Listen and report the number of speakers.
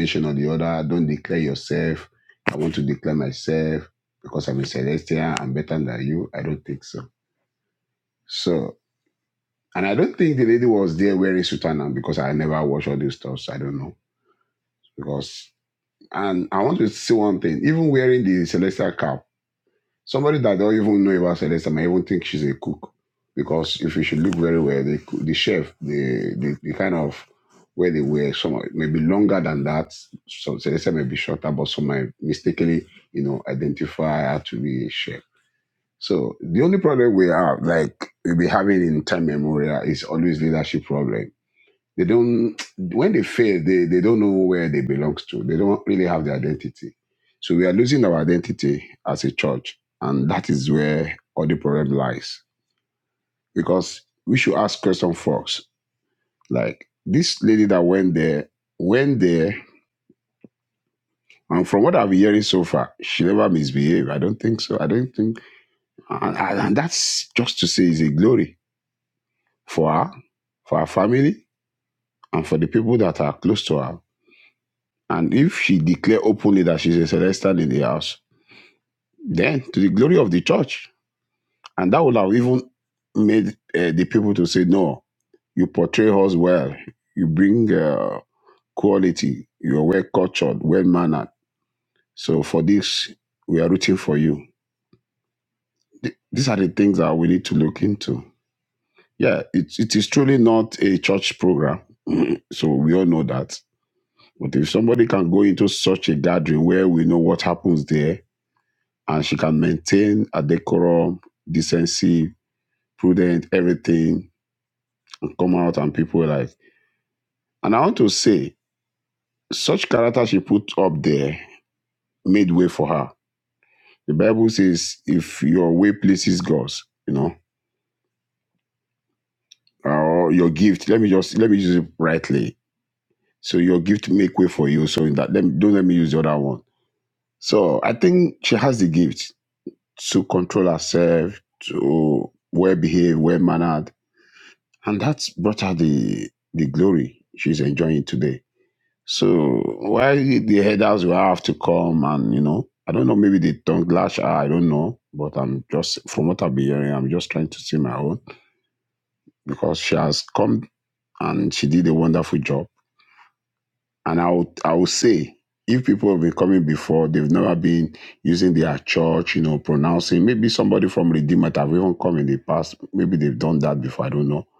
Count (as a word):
one